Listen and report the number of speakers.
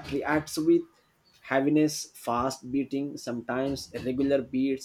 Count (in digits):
1